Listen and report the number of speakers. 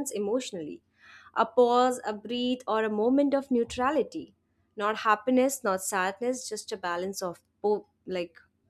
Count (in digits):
1